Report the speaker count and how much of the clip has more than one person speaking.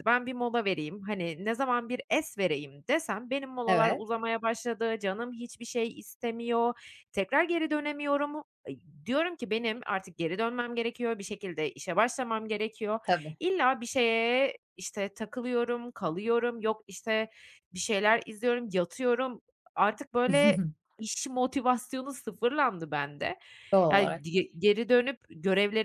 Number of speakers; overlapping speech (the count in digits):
2, about 2%